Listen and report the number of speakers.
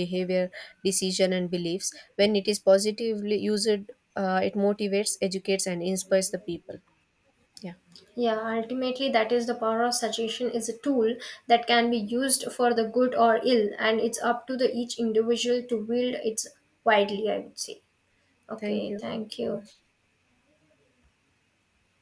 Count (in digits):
2